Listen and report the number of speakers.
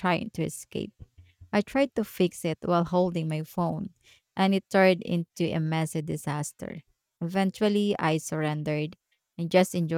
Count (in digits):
1